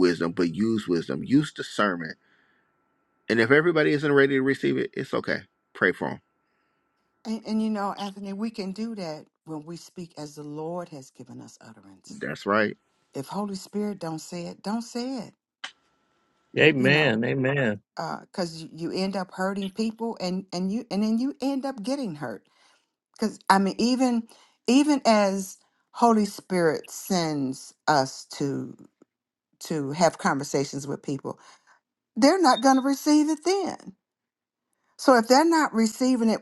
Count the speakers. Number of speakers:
three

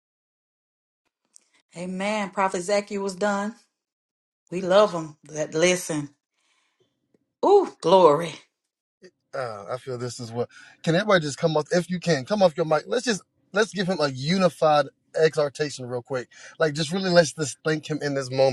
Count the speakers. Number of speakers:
two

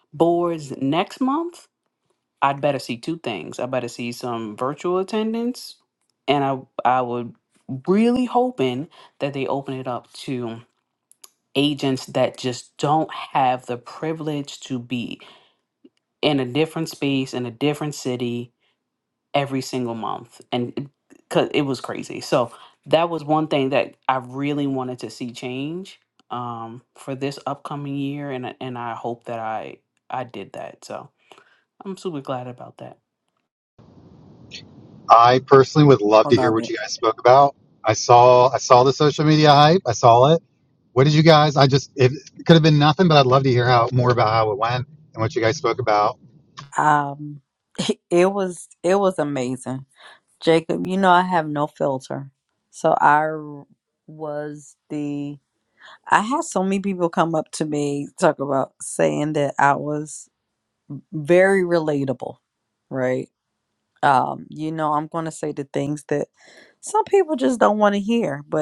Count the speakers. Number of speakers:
three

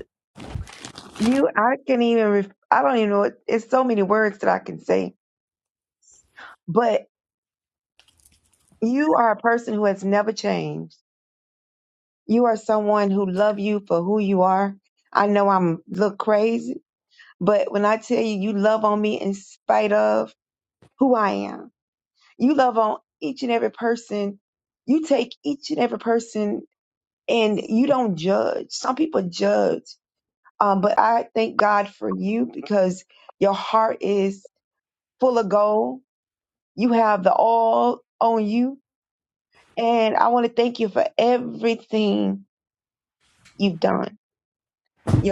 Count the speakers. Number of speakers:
one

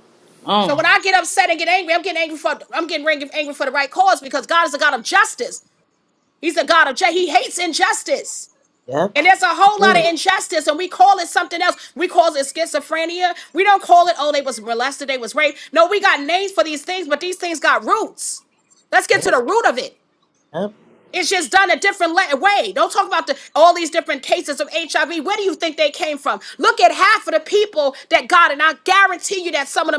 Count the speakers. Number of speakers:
two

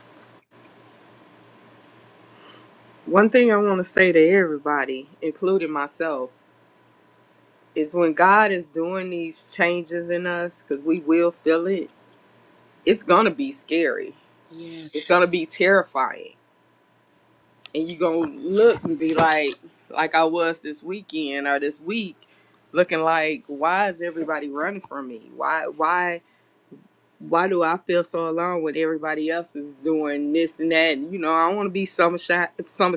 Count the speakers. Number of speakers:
one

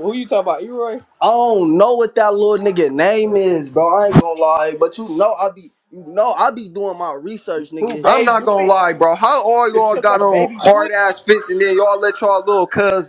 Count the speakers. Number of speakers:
three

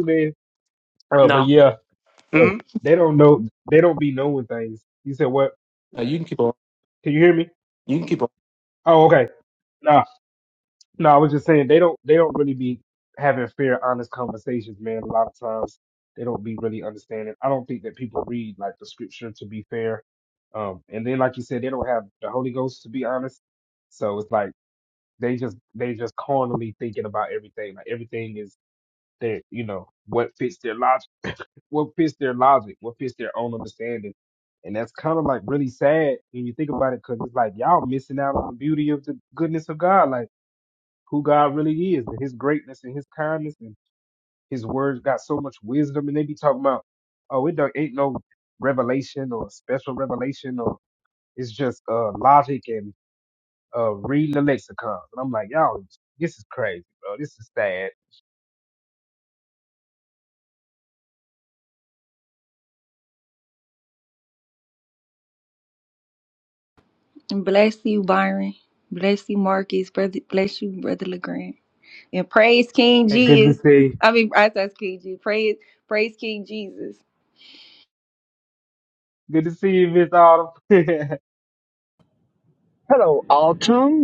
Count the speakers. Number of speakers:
four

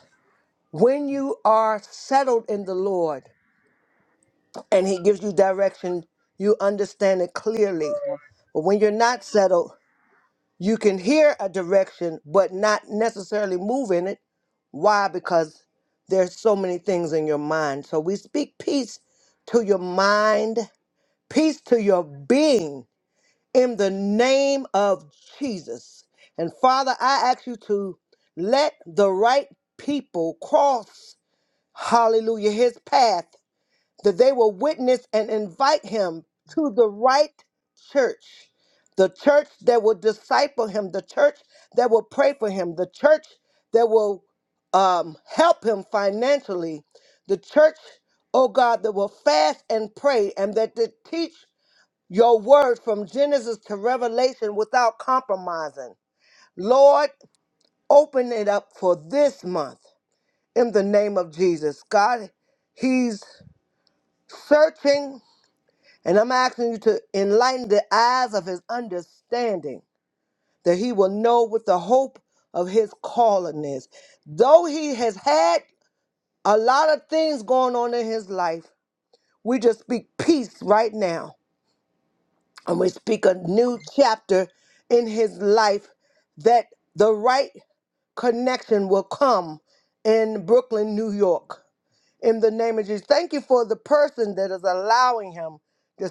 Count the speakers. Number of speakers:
one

